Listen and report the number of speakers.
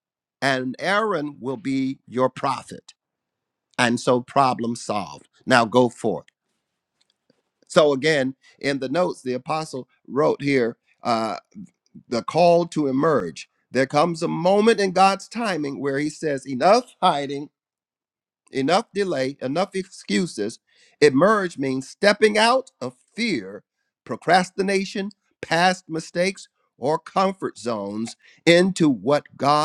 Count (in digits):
1